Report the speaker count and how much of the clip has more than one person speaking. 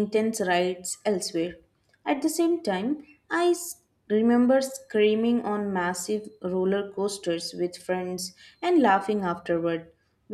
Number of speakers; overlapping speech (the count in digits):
1, no overlap